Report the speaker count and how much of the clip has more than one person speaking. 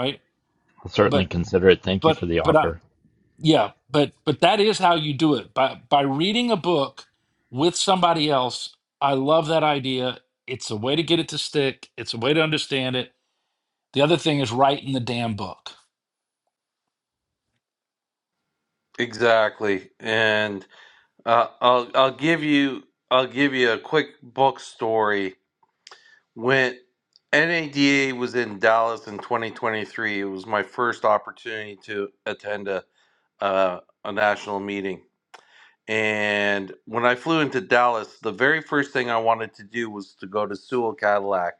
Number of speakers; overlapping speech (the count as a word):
three, about 2%